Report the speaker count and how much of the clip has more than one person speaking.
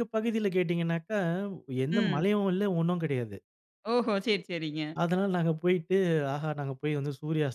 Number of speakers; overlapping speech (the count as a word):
two, about 4%